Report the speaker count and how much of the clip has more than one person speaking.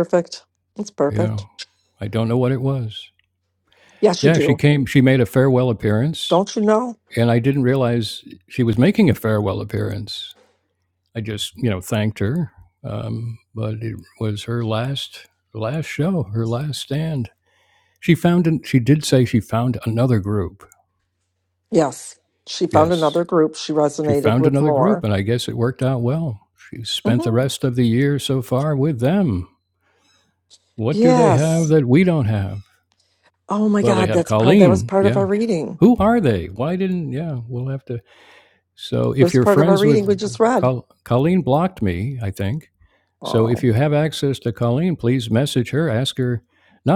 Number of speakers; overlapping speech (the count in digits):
2, about 12%